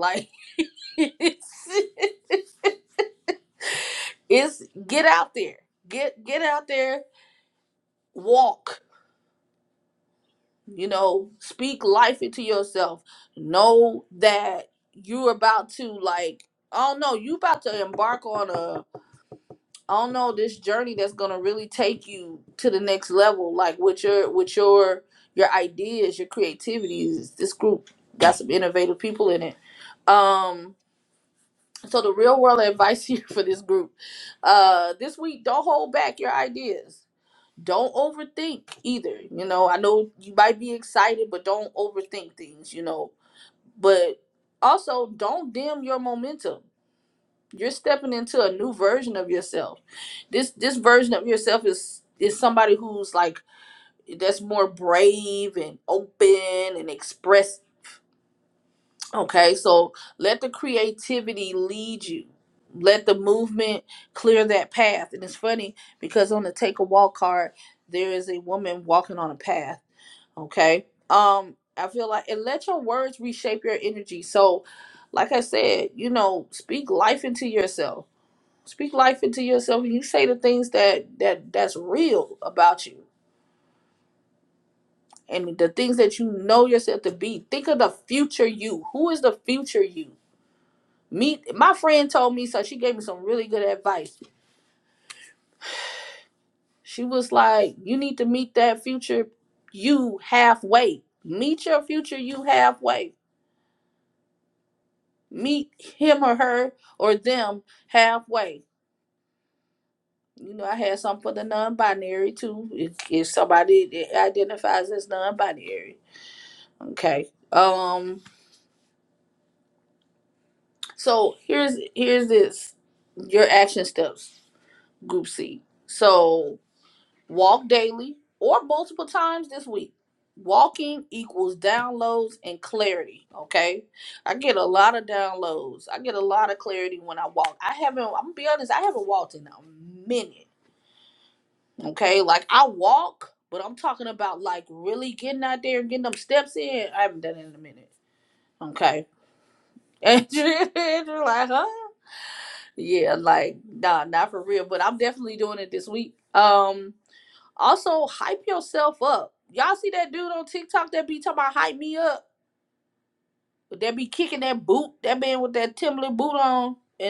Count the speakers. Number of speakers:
one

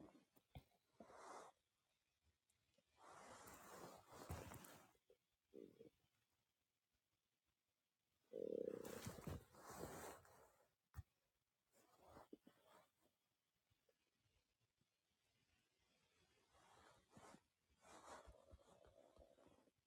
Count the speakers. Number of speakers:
zero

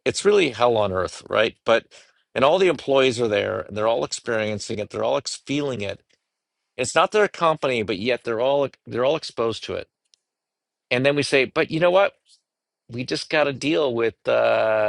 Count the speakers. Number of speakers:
one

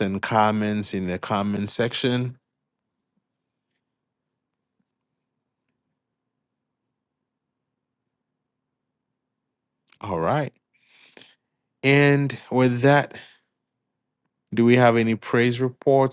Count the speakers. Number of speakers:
one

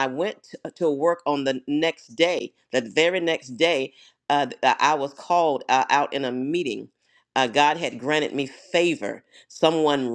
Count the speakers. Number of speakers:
one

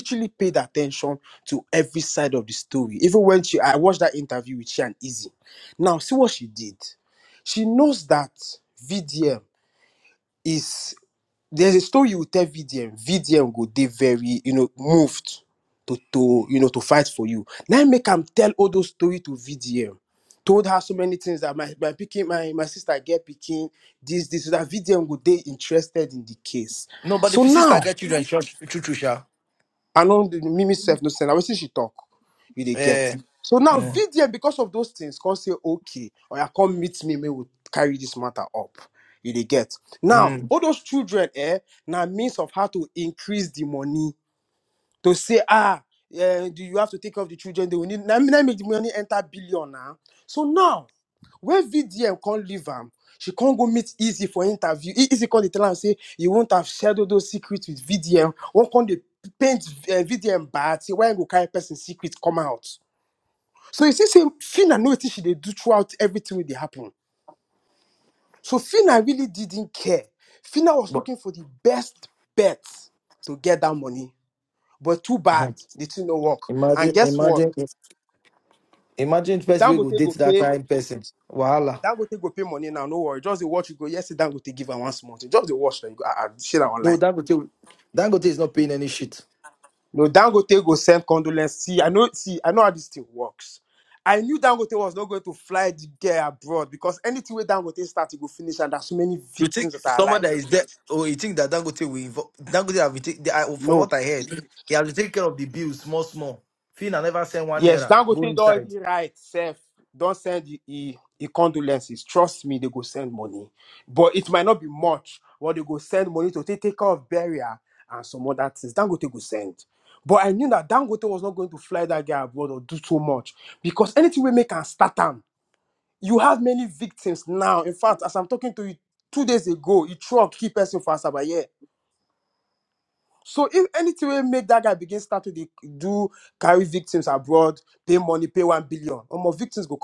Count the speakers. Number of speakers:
two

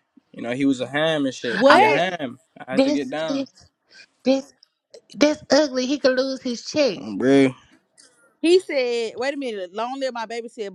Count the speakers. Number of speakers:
three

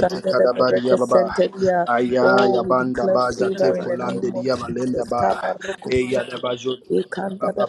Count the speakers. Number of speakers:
two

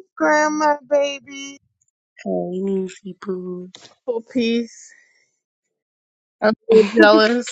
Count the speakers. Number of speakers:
three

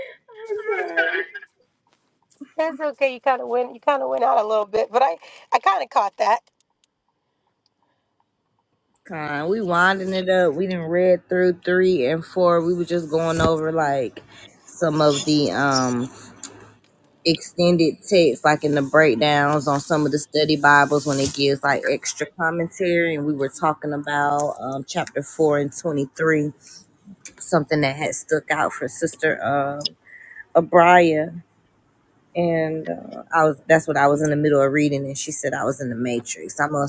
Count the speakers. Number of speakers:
three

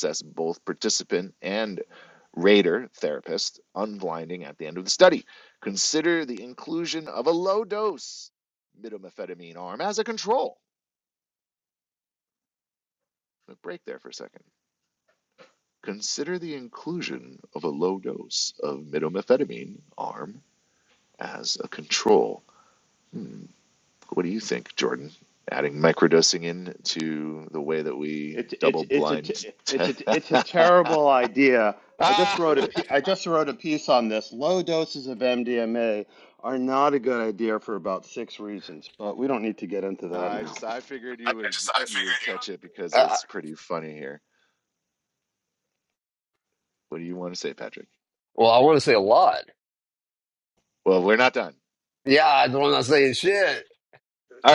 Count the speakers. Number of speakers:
three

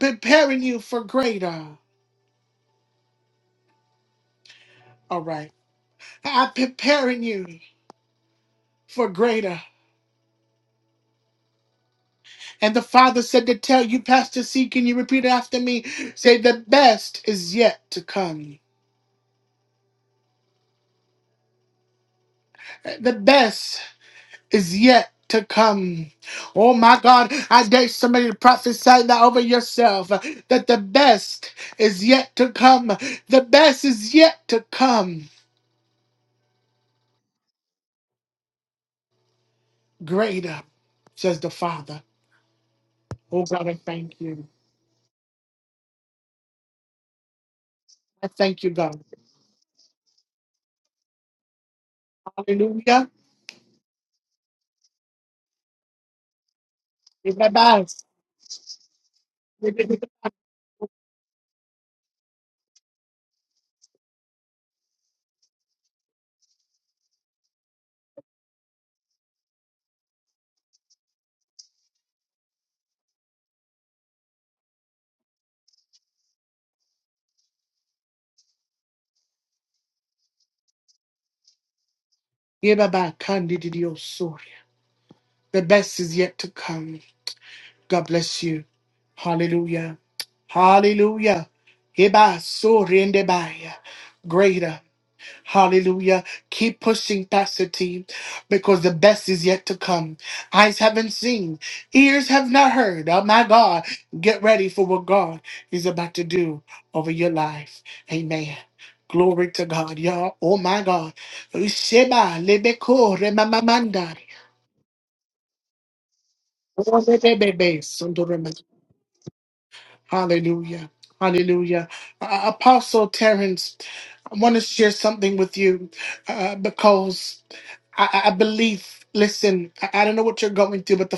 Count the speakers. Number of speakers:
one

